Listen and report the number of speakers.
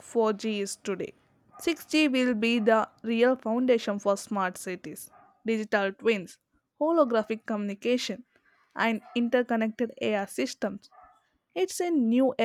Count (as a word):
one